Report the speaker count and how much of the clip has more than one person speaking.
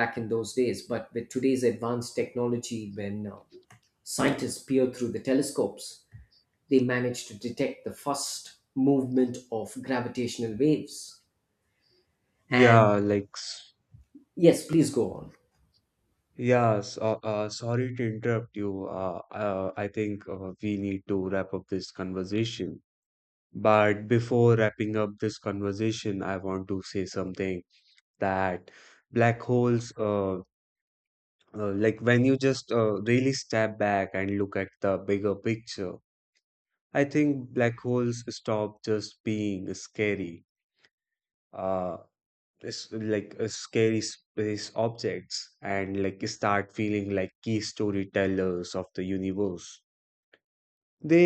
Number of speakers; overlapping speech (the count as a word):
two, about 1%